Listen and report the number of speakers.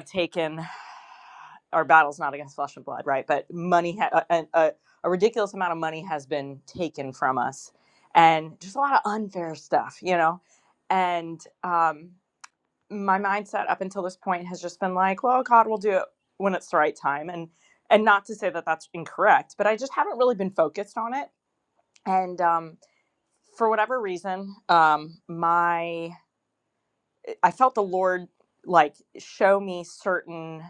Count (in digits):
1